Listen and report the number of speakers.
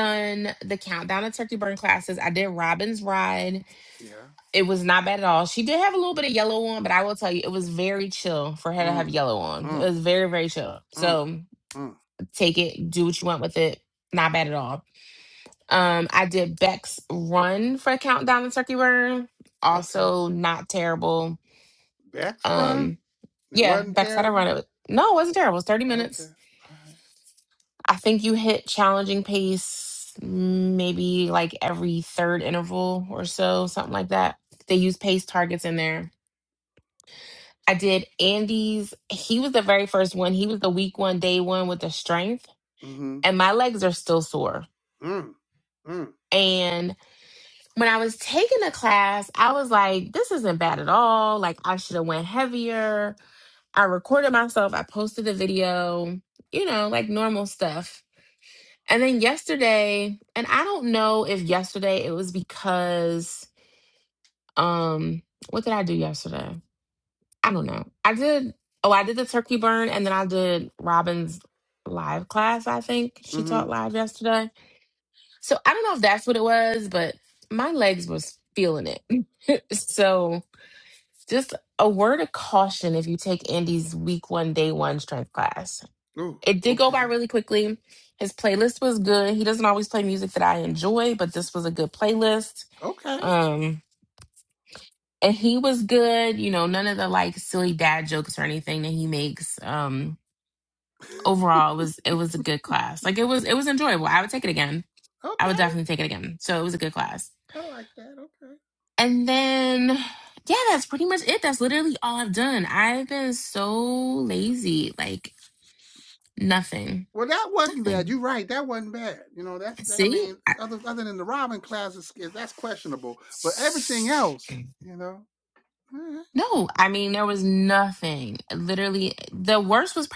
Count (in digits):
2